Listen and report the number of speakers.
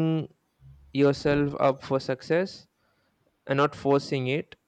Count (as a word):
one